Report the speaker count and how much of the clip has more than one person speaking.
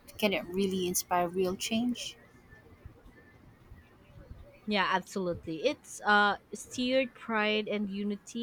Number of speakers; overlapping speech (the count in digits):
2, no overlap